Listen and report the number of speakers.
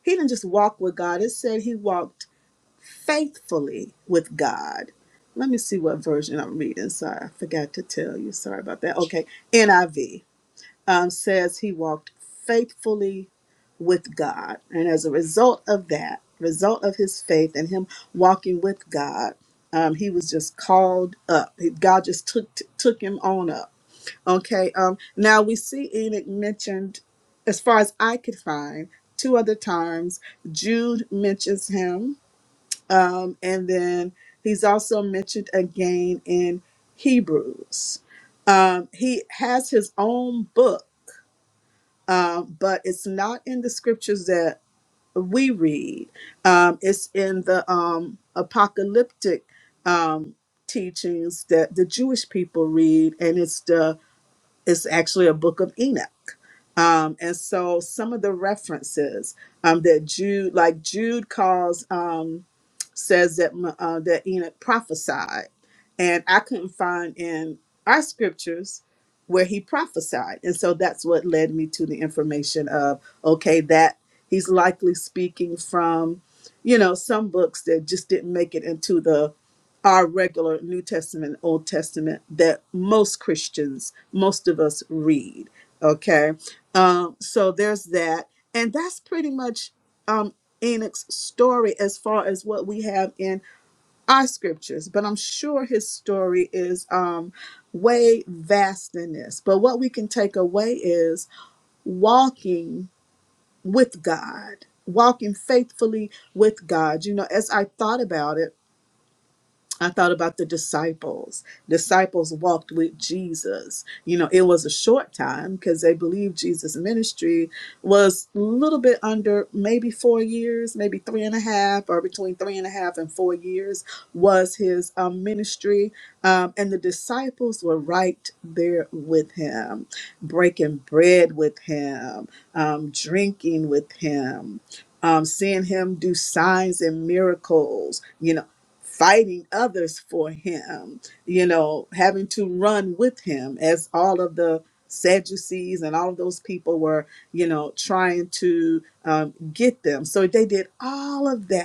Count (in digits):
1